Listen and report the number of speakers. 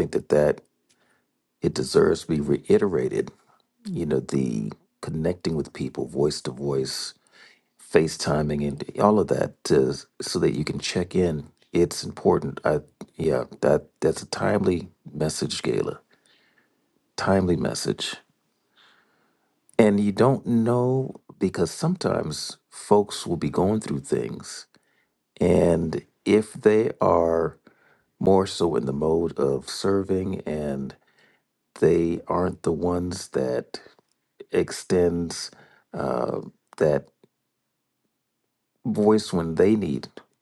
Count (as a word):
one